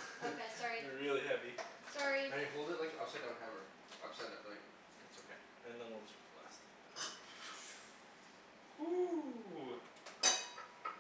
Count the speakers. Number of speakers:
4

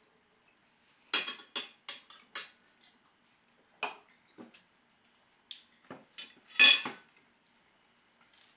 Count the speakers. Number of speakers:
0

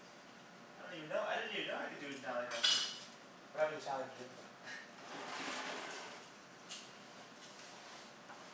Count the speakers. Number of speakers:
1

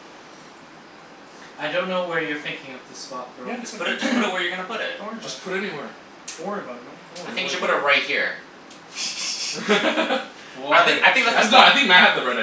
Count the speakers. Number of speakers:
4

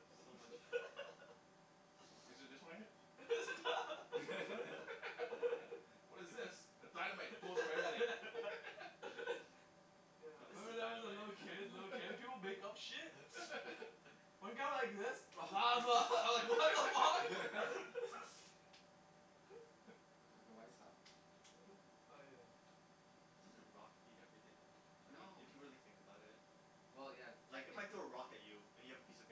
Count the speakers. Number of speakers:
4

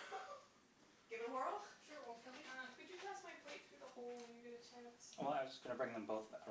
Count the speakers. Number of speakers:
3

